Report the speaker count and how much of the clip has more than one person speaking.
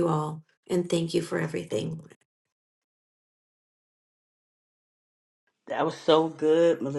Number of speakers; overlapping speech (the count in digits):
2, no overlap